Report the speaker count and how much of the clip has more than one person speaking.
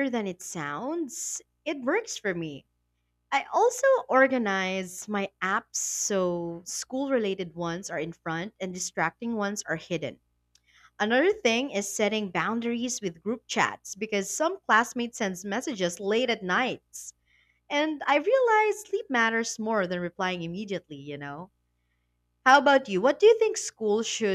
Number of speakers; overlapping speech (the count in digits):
1, no overlap